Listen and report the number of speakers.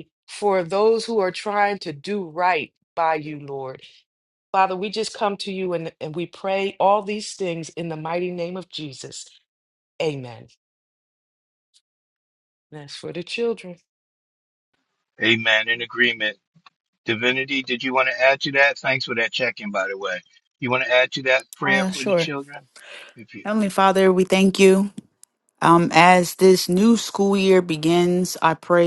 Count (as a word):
three